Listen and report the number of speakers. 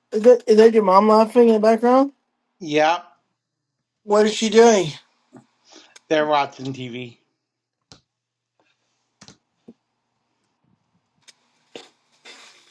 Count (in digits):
2